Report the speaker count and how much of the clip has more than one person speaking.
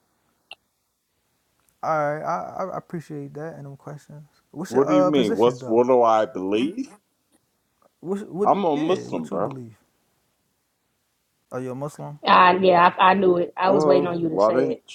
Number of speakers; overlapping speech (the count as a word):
three, about 22%